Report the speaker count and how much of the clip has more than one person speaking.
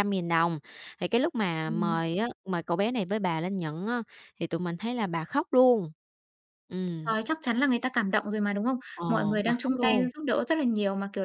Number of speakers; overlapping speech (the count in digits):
2, about 13%